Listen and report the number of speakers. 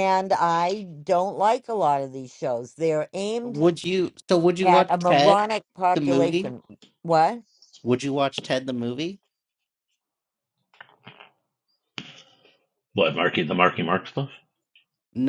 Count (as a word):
three